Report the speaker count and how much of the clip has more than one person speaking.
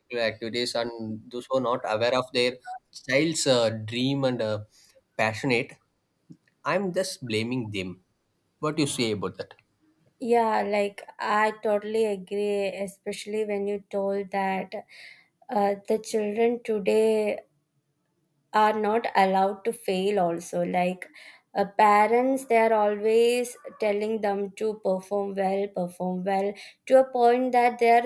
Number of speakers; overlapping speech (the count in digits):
2, no overlap